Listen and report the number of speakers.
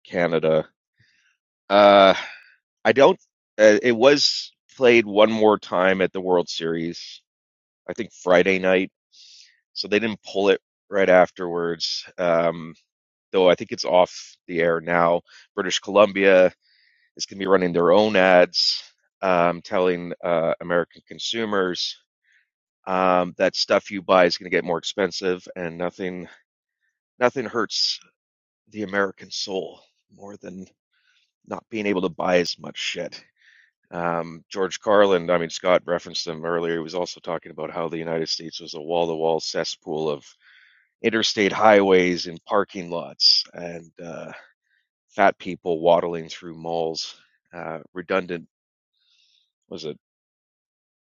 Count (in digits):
1